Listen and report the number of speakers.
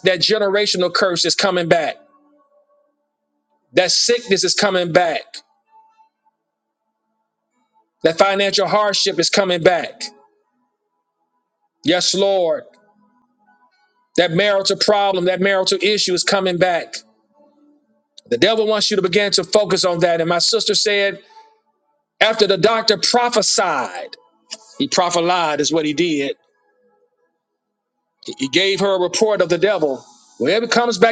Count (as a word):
one